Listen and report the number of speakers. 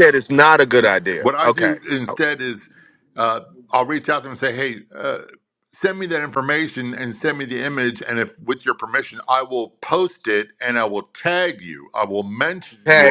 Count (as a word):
two